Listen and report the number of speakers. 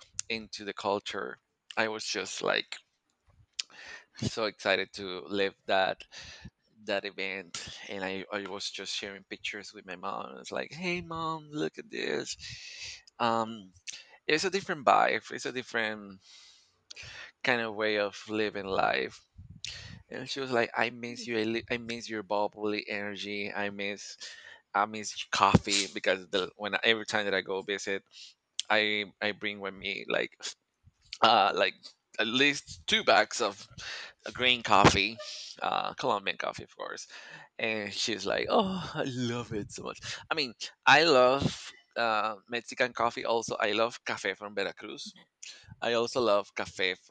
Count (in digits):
1